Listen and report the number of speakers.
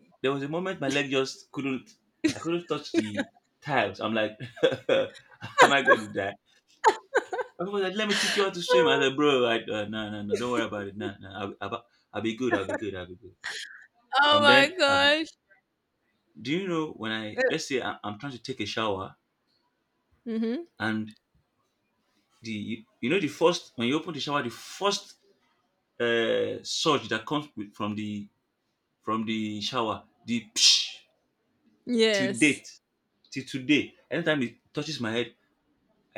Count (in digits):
2